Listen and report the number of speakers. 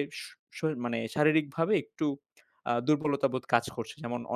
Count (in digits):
1